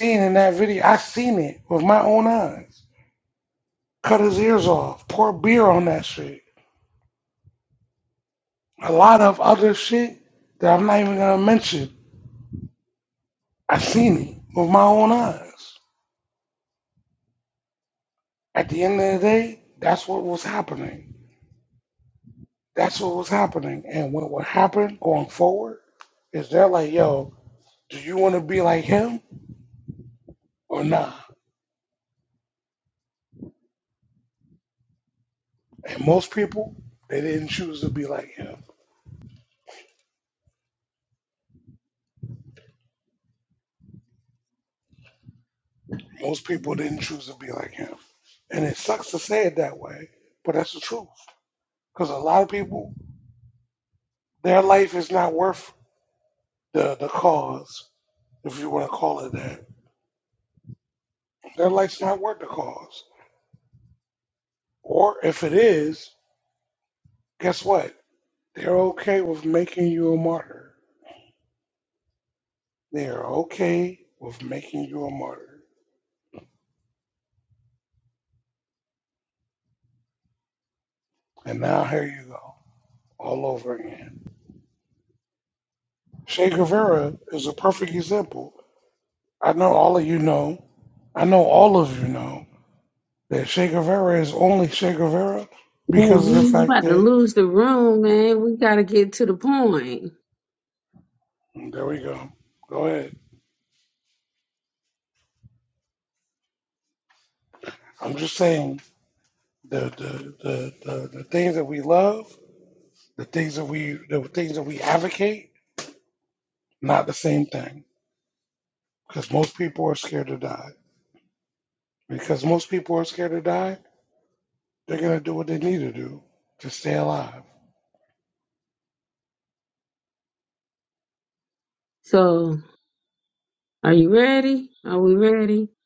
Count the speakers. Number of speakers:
2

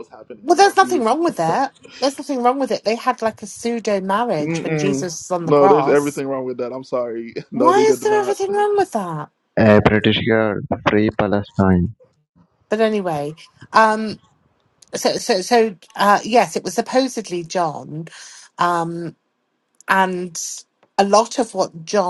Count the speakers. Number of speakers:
3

